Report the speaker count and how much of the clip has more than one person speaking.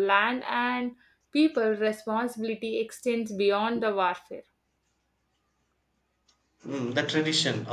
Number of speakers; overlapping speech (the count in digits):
2, no overlap